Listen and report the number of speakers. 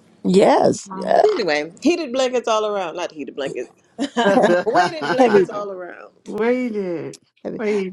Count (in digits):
3